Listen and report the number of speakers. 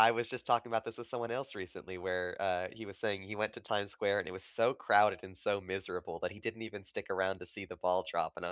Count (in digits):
1